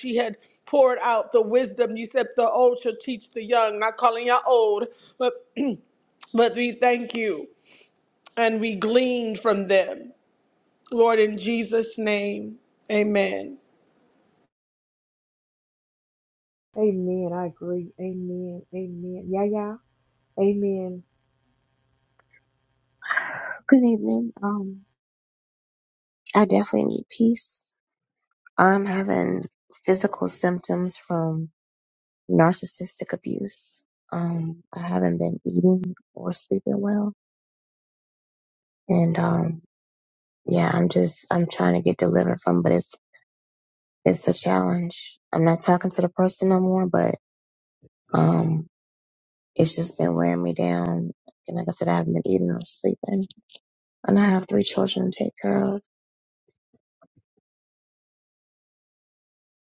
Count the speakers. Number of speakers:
three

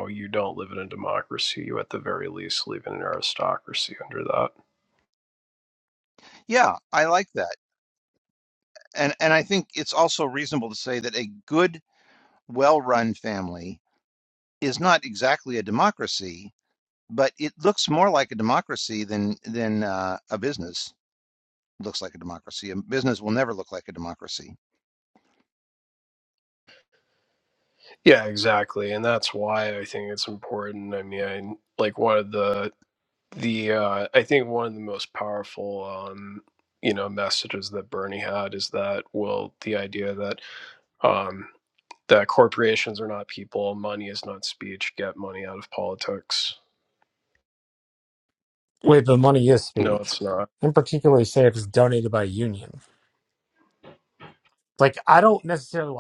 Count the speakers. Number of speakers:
three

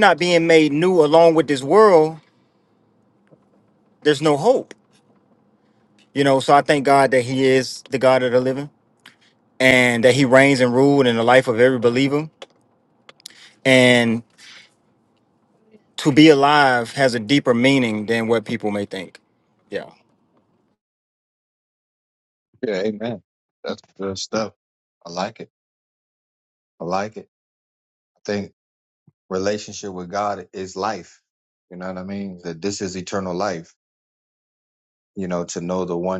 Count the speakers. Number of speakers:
two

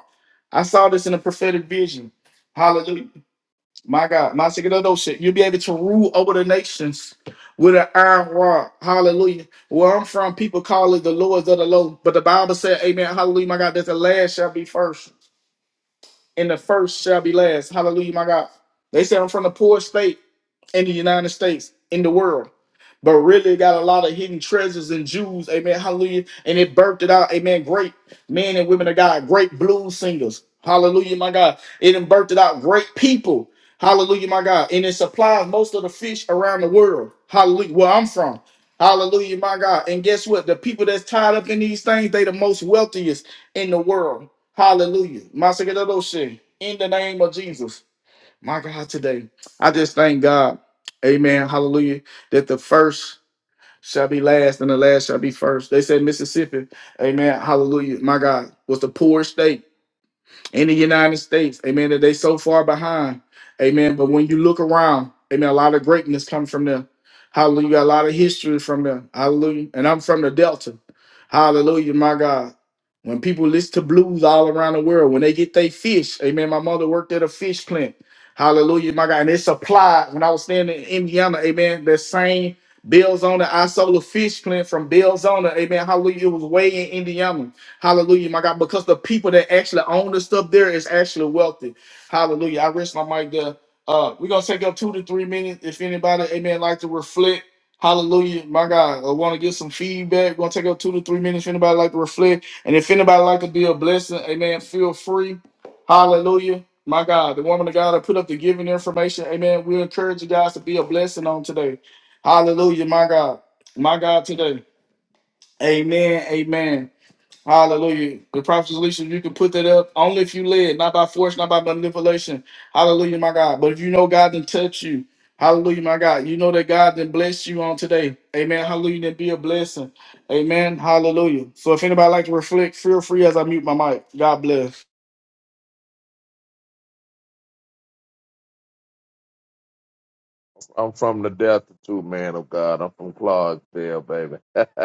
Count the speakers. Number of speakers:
two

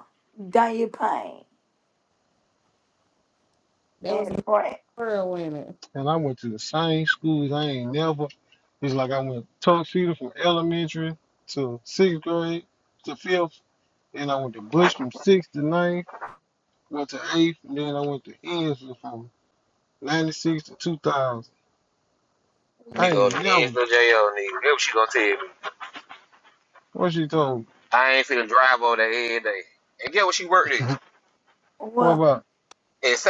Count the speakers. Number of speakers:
four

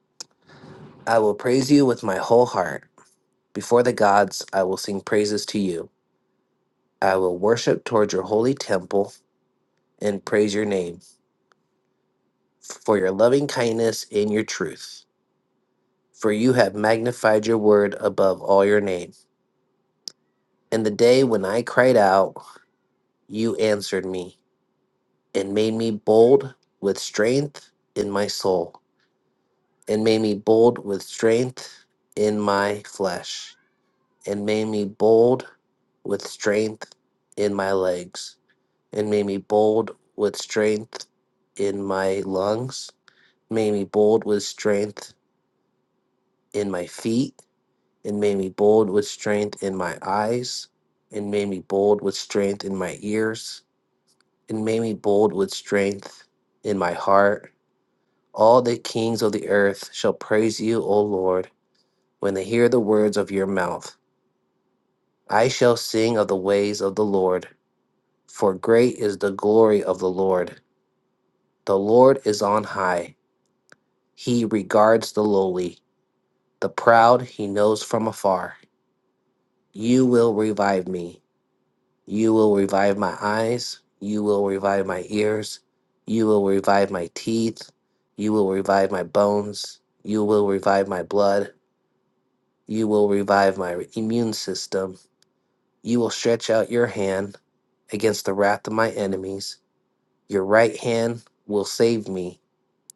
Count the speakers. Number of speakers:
one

